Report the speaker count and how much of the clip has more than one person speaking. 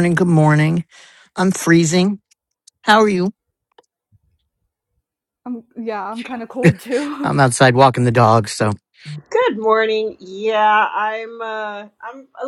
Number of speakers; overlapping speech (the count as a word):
three, about 1%